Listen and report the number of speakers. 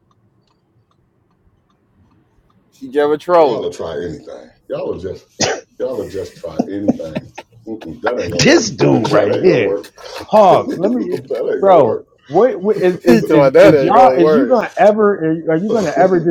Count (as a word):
three